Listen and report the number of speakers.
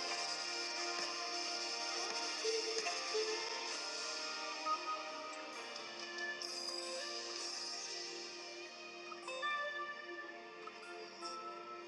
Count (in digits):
0